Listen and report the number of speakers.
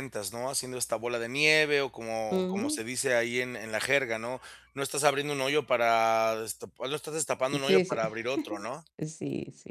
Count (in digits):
2